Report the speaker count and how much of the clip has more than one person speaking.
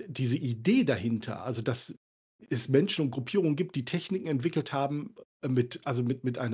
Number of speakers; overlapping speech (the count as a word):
one, no overlap